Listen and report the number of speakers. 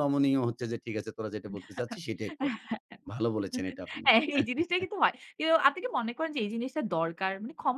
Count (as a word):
two